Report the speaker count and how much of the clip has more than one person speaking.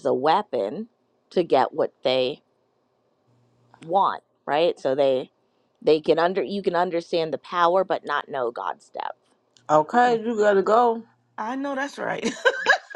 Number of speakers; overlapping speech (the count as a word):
three, about 1%